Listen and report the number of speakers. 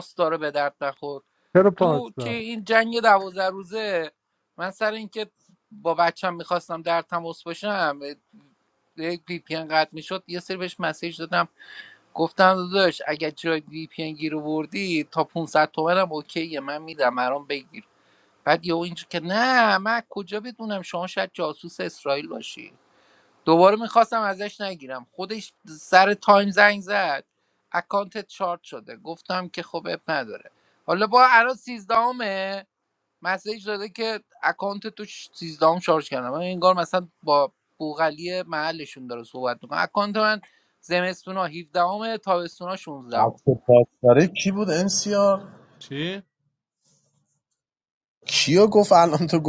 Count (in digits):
3